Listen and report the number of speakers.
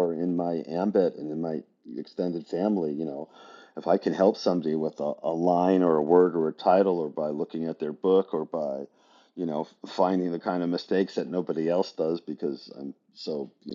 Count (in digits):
1